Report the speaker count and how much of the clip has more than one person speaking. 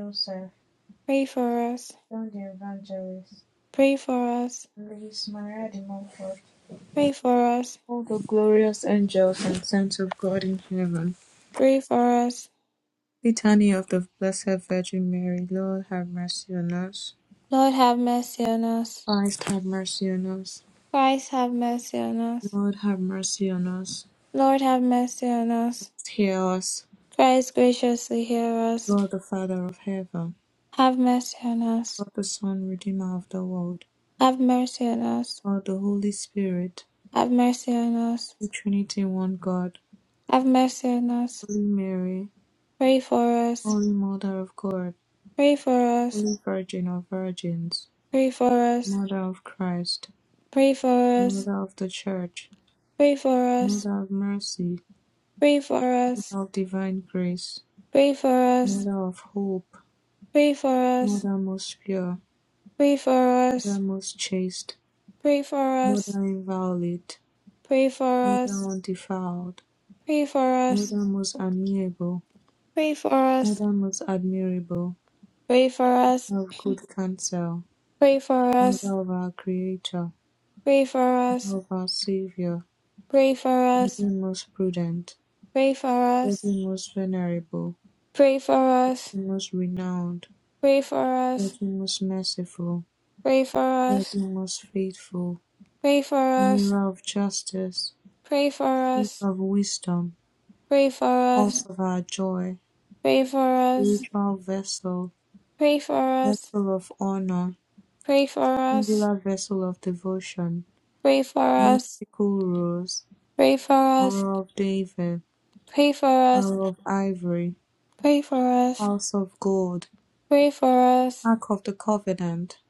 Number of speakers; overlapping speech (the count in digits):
2, about 3%